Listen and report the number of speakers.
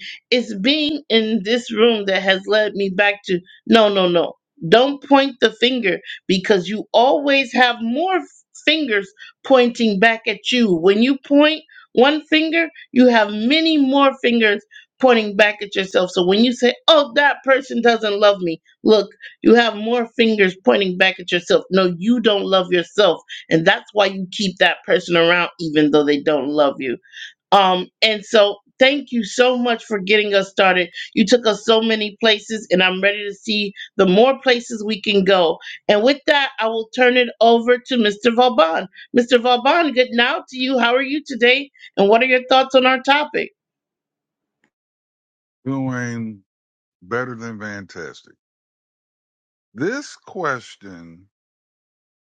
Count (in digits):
2